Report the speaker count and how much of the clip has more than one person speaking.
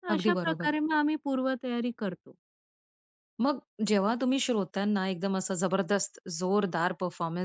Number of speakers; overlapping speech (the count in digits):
2, about 8%